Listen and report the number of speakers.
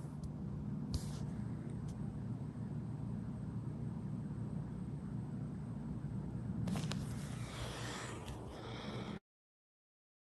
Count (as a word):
zero